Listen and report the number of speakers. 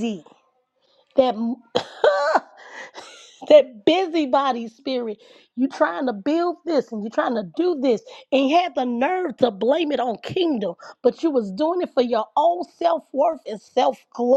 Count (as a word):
one